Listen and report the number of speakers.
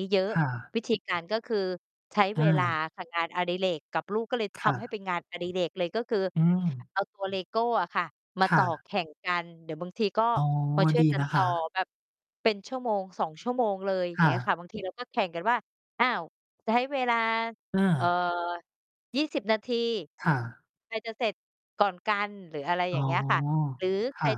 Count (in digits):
2